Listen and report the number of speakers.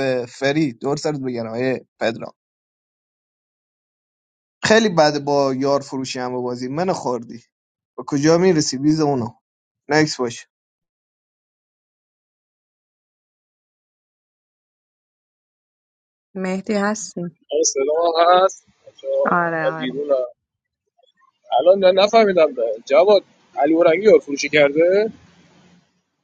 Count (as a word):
three